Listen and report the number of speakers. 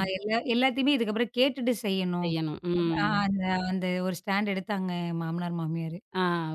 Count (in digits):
2